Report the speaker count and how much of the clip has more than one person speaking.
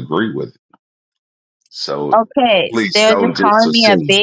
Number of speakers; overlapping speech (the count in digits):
2, about 38%